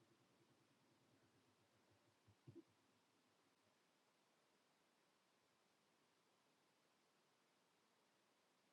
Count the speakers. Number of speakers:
zero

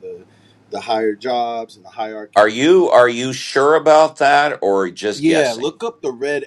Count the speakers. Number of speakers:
two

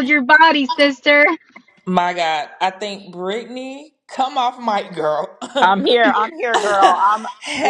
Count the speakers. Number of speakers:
three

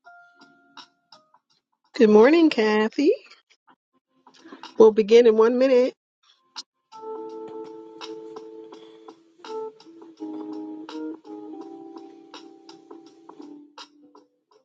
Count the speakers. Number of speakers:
one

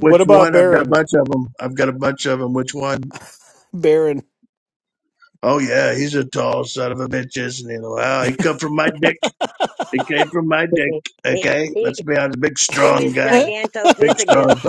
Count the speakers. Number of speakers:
three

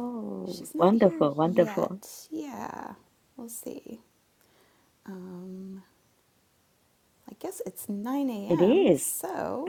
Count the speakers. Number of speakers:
two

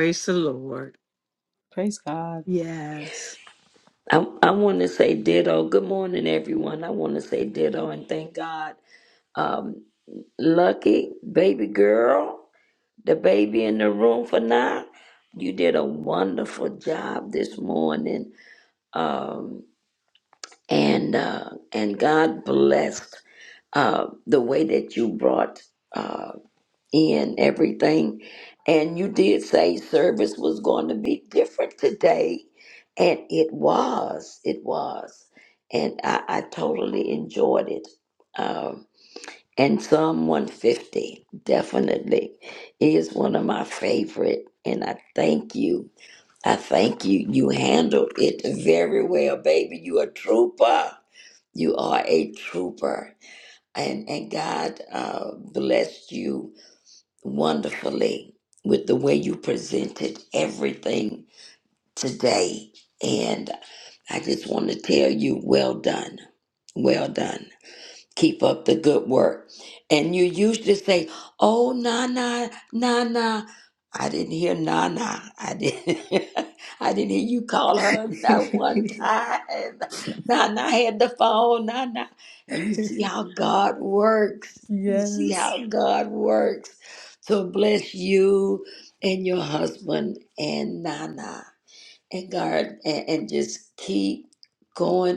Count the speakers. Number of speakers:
three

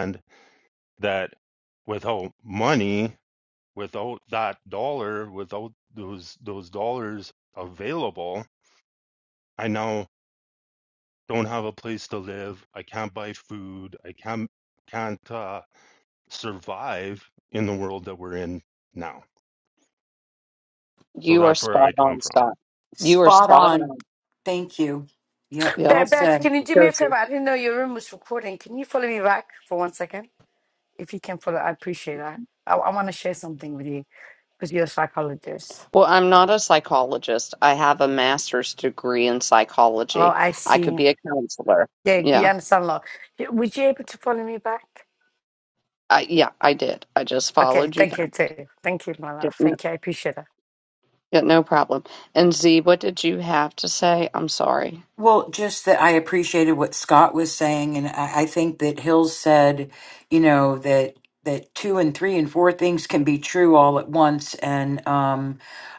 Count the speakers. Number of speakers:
four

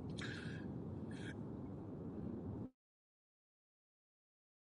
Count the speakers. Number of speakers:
zero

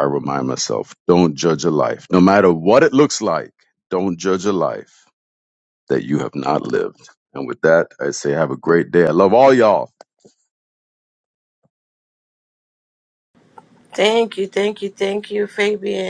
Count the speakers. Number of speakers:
two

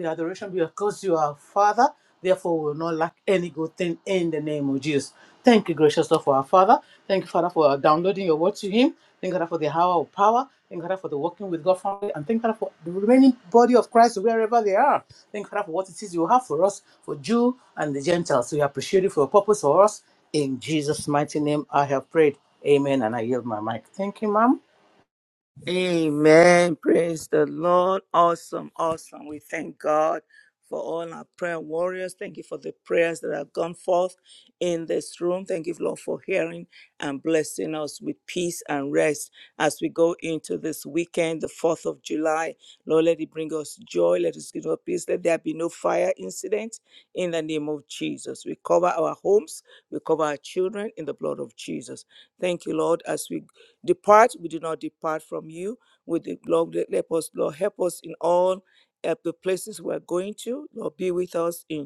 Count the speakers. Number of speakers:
two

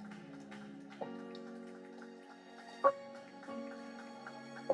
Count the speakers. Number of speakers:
zero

